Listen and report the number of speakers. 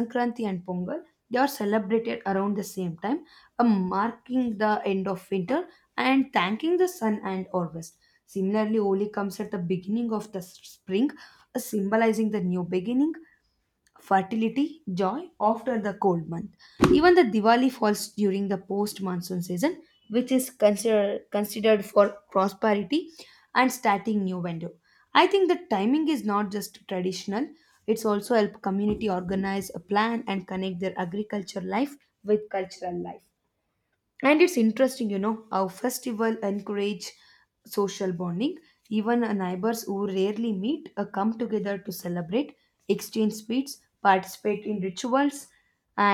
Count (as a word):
one